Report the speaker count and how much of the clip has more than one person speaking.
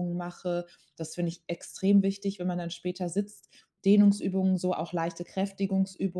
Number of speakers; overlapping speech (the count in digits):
1, no overlap